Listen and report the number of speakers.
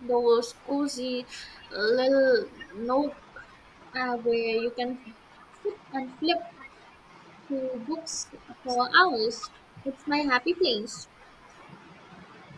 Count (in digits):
1